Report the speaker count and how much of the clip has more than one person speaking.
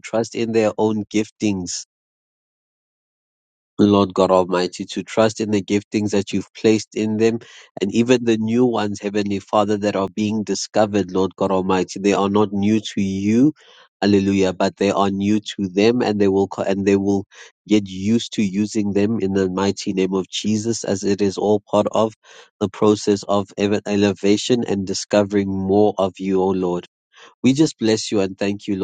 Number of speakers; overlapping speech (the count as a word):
one, no overlap